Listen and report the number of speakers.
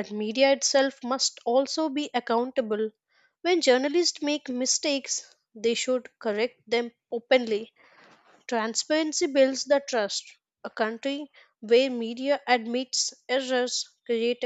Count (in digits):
1